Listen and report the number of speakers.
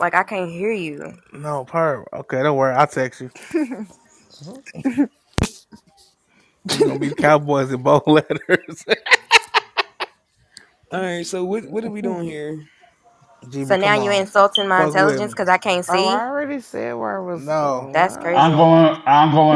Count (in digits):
5